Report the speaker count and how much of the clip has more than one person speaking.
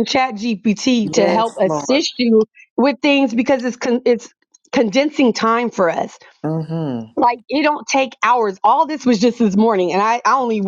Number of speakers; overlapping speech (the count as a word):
two, about 9%